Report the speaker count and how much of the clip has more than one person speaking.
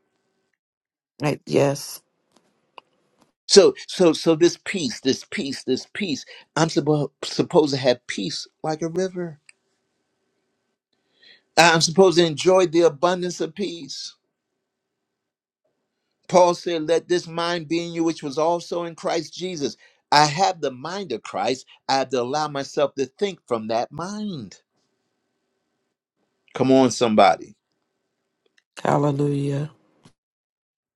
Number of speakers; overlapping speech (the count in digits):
2, no overlap